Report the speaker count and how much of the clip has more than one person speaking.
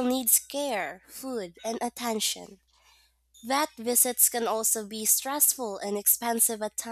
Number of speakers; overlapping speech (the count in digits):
1, no overlap